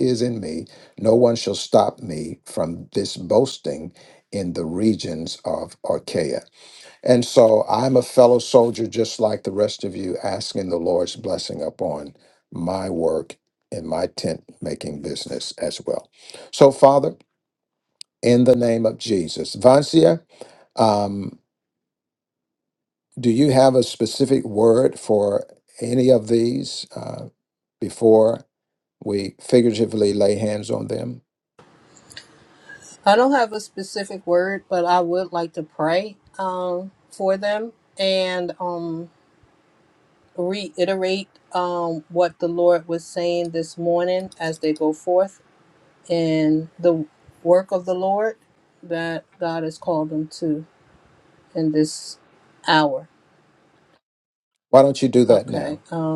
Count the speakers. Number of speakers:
two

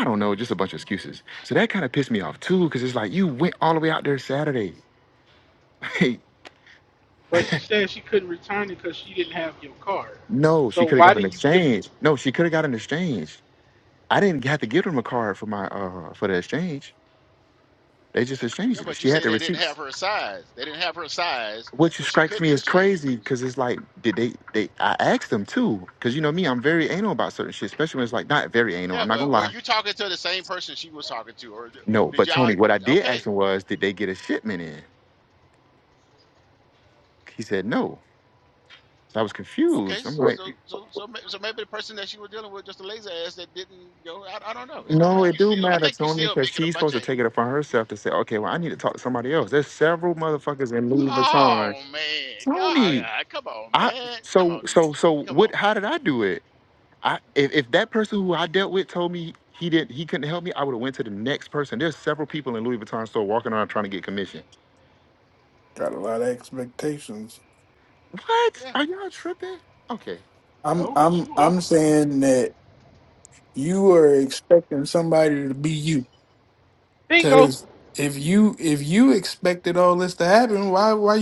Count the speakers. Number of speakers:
four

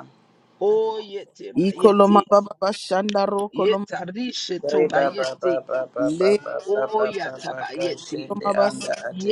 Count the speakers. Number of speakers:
three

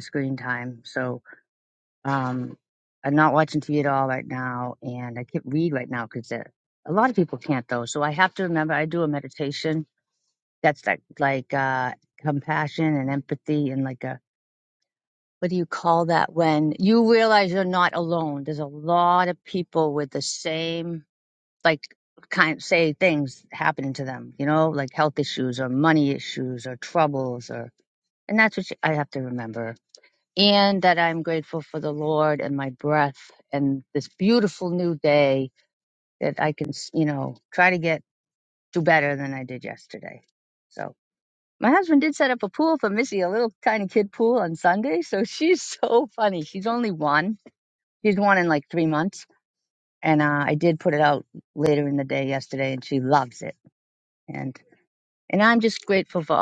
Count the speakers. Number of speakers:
one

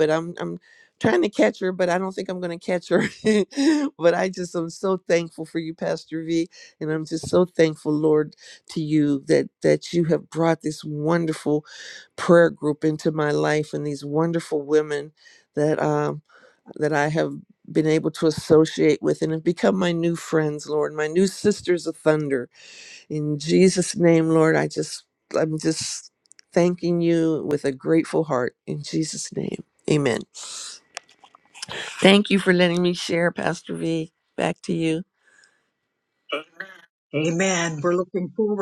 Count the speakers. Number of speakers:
two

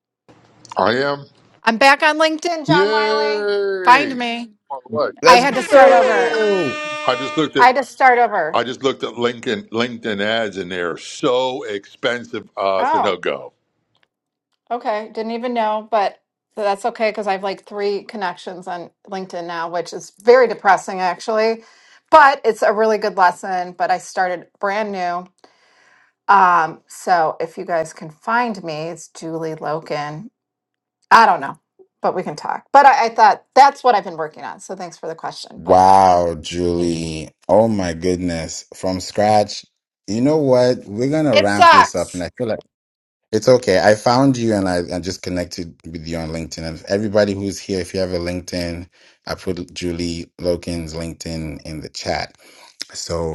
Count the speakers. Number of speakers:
three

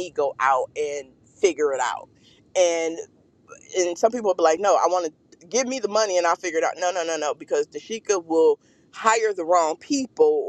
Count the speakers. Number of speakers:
one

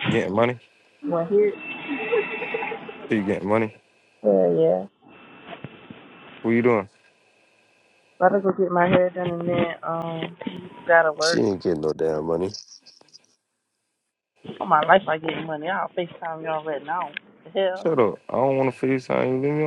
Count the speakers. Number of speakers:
three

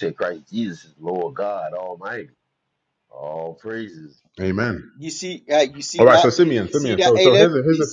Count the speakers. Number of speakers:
three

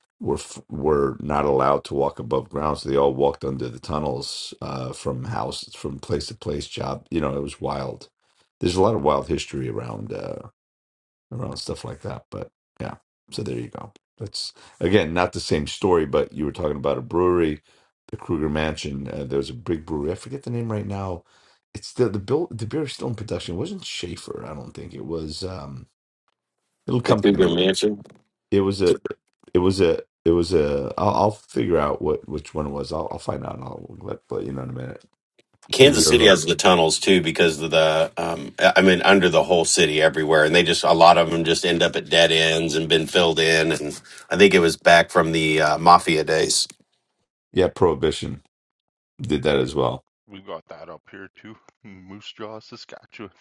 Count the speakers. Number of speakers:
three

